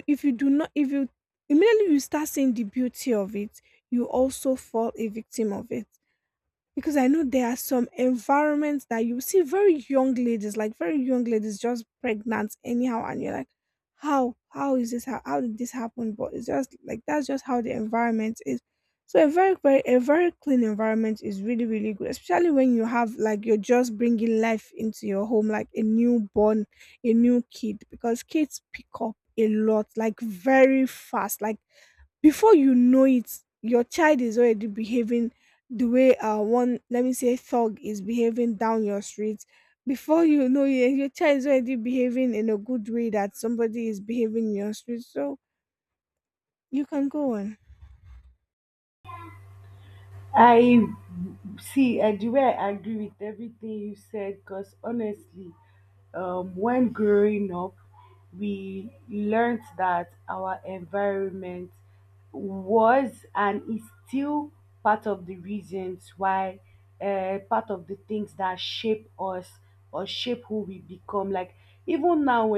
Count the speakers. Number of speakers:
2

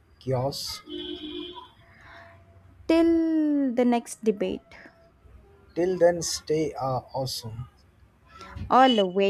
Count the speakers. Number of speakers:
2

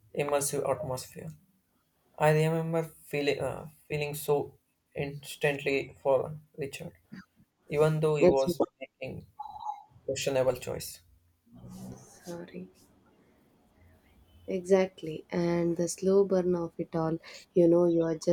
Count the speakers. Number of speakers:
2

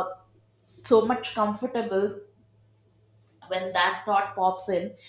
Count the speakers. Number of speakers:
1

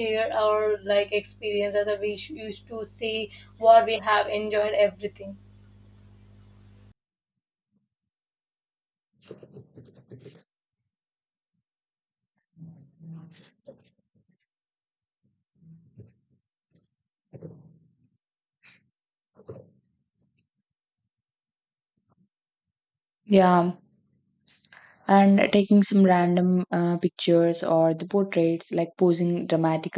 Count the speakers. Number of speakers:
2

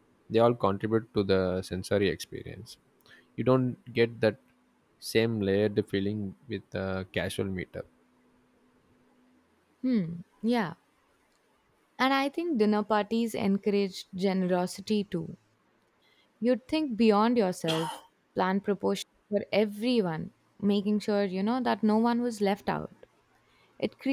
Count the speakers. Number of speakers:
2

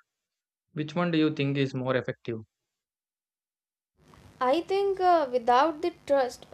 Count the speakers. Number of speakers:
2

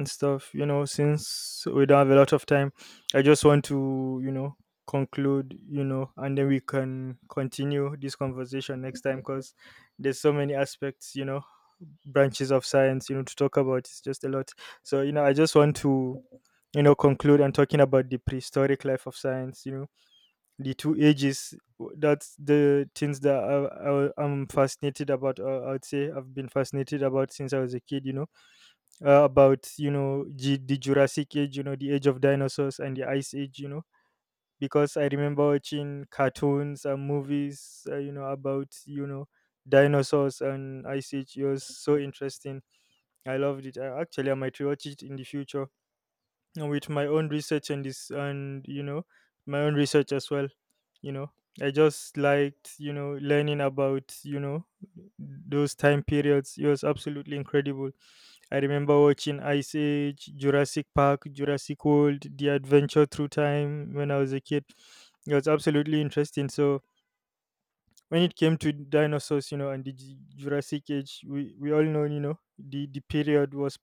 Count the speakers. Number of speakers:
1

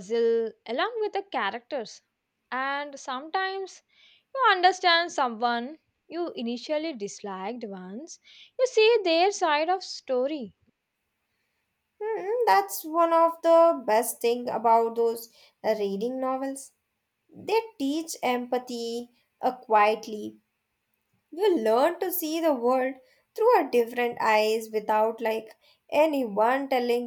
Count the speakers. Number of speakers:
2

